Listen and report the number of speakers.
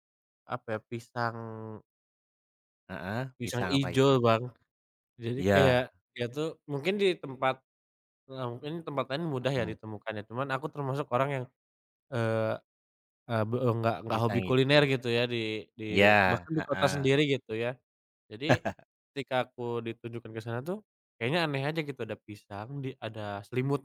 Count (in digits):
2